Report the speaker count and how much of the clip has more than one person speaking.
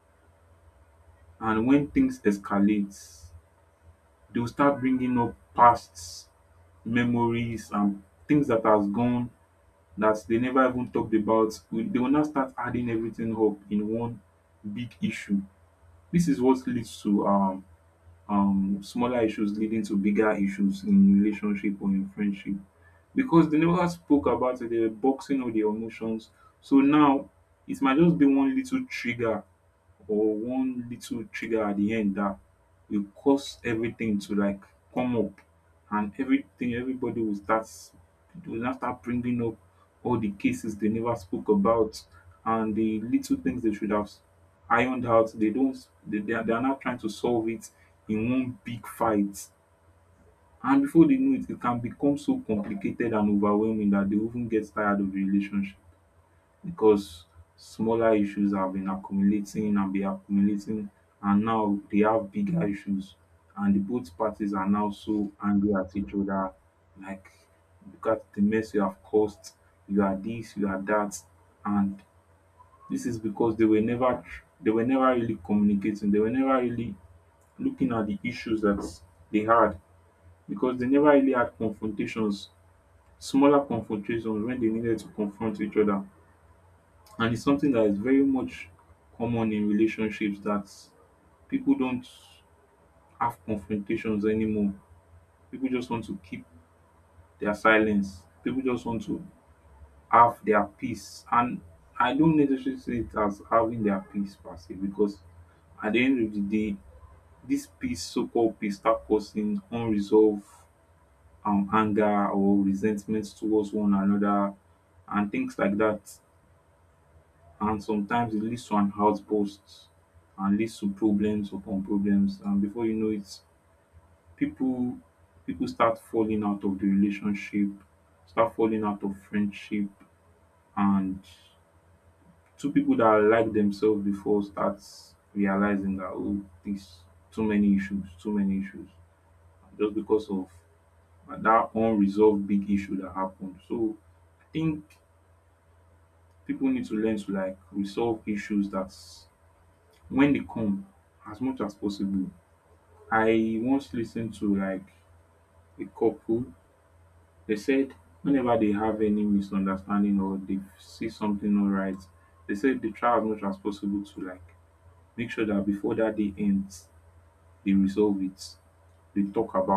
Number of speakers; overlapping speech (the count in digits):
1, no overlap